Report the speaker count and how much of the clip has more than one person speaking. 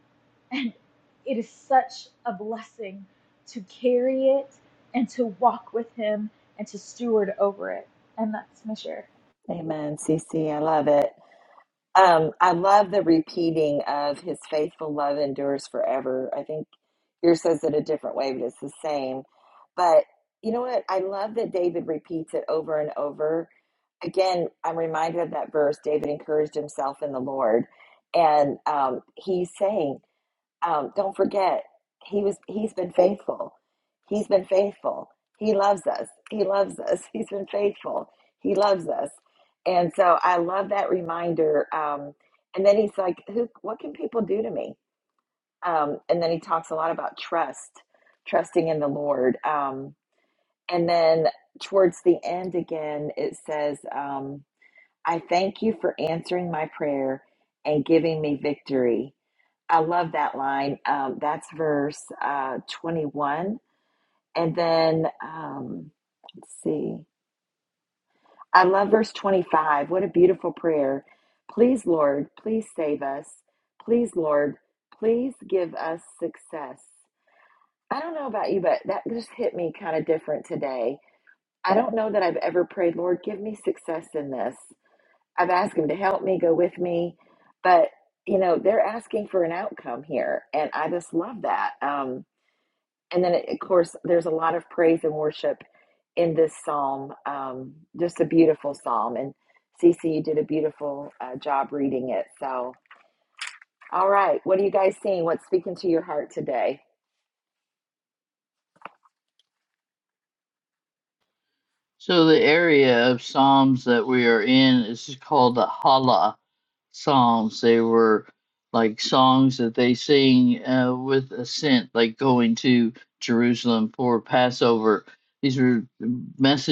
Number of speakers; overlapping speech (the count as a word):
three, no overlap